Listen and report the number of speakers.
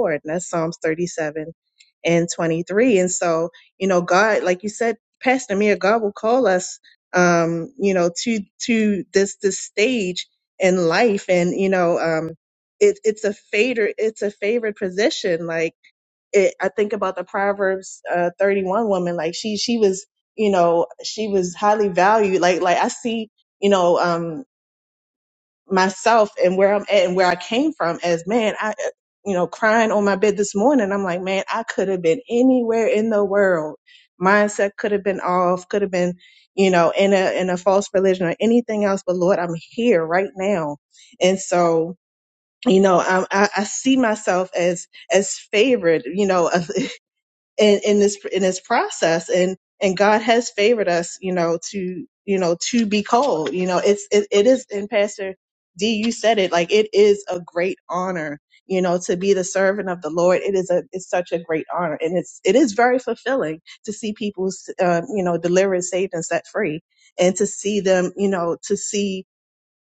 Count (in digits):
1